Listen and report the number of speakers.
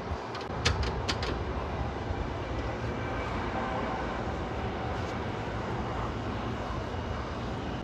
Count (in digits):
0